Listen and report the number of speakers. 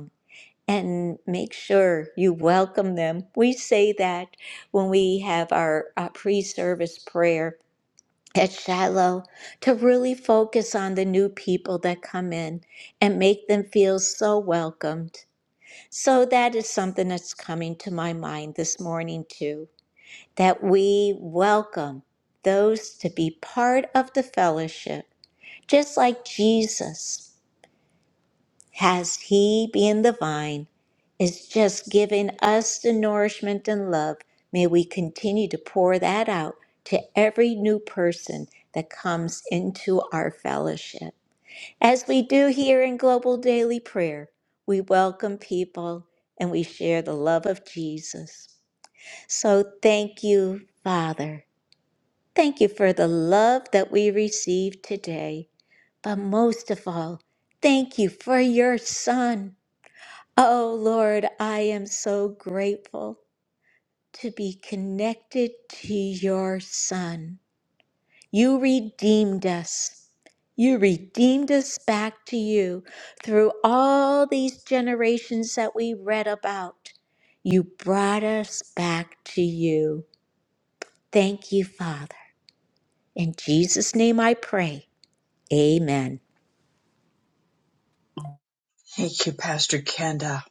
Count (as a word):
two